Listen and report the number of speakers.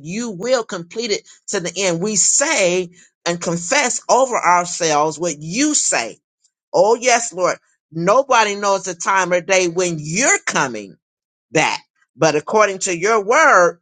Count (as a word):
one